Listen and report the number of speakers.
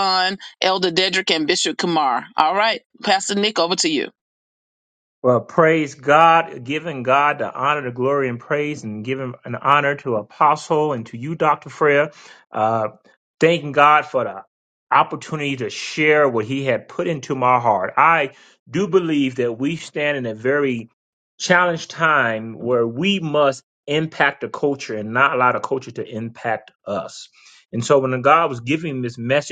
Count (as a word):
two